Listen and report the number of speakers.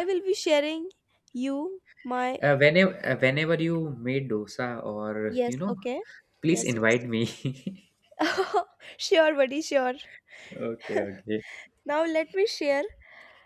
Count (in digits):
2